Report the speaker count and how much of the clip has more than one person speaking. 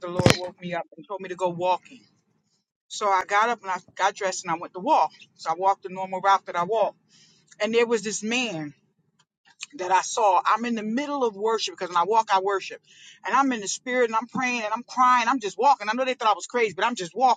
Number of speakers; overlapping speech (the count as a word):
one, no overlap